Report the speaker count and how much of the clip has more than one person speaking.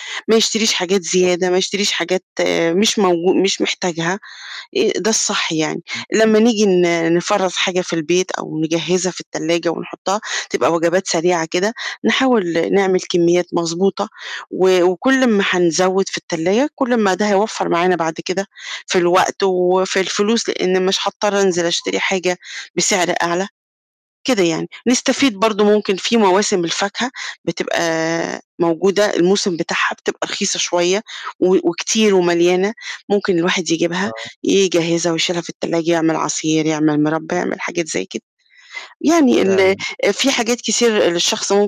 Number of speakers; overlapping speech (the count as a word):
two, about 2%